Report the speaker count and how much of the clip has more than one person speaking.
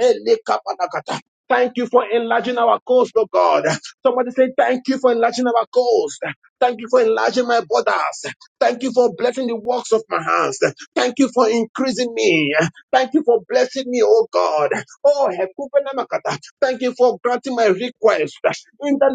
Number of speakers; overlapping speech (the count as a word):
one, no overlap